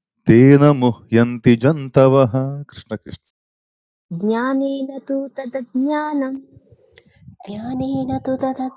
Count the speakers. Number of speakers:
3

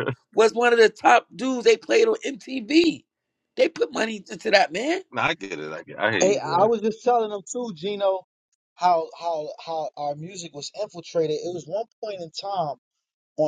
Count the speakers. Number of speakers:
3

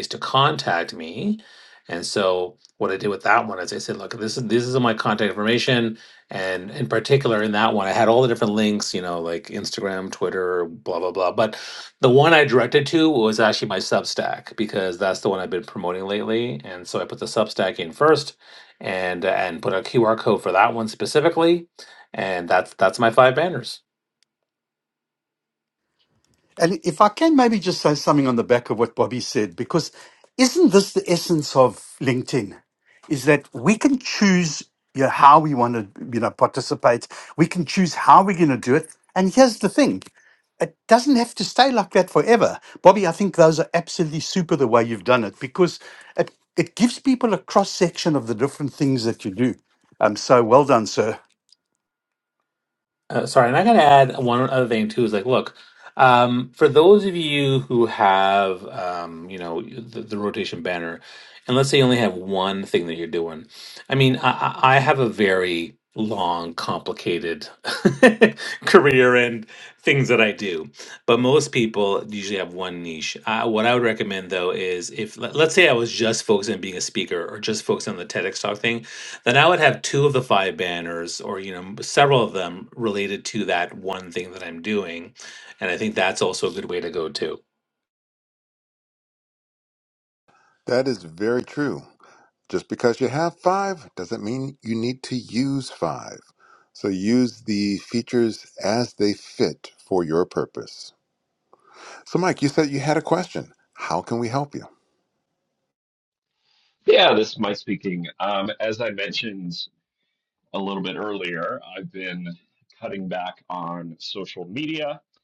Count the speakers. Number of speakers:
4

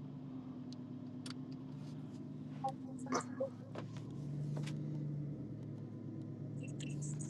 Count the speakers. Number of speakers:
0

